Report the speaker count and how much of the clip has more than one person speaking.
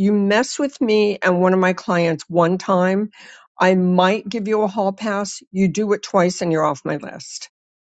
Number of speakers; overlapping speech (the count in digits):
1, no overlap